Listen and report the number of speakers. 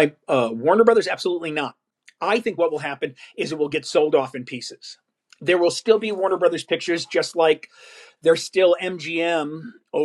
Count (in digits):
1